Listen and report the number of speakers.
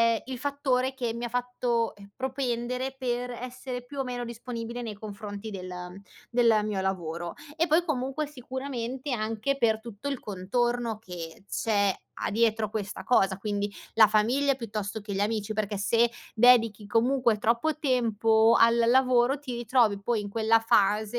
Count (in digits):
1